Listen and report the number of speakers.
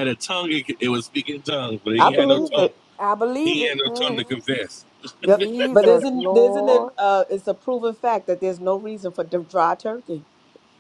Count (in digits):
3